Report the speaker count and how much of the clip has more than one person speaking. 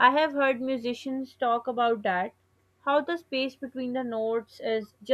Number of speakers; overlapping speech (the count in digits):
1, no overlap